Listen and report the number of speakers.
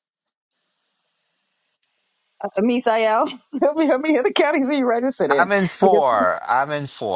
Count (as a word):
two